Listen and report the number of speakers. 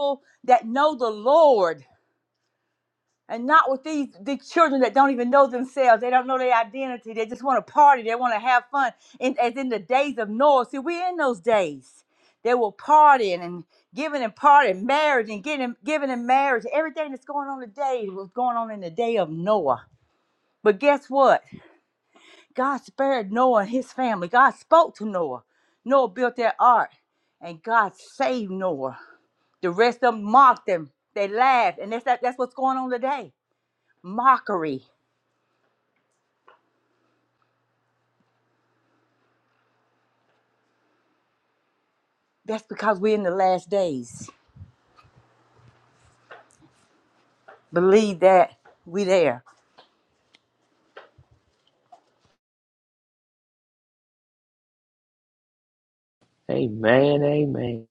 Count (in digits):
2